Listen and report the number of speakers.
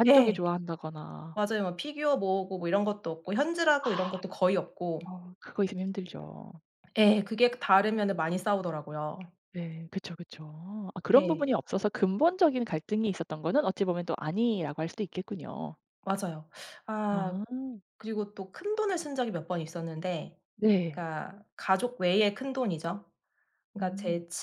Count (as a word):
two